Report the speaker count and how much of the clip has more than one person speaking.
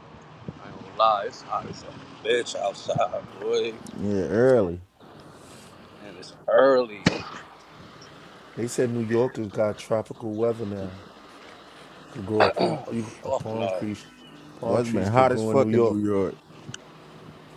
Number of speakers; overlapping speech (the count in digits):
3, about 11%